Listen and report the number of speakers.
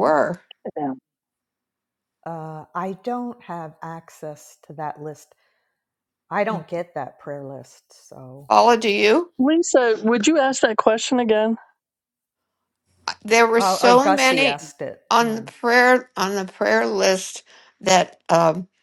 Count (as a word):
three